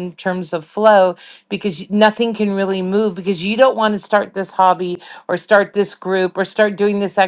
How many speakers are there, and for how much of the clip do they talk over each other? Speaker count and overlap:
one, no overlap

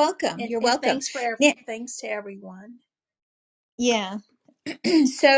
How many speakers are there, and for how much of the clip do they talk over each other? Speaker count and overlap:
two, about 15%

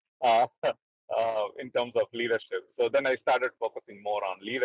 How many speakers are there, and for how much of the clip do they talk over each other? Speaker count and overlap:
one, no overlap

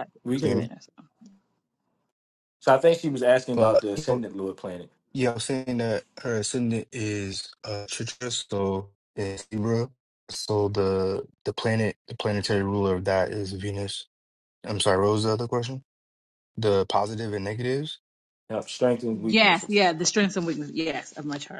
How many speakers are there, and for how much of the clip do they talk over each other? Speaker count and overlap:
three, about 6%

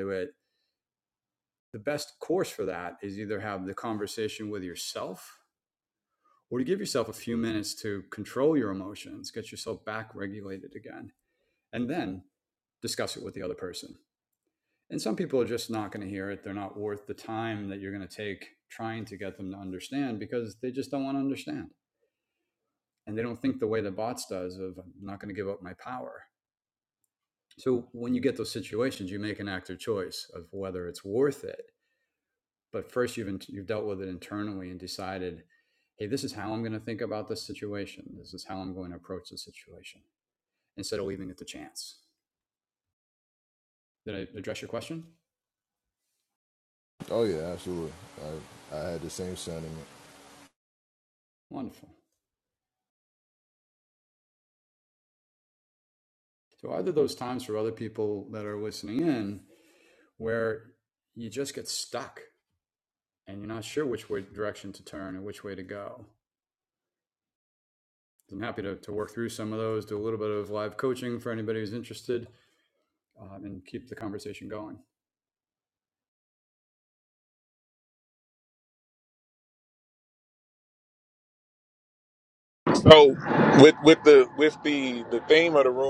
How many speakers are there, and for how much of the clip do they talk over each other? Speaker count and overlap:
three, no overlap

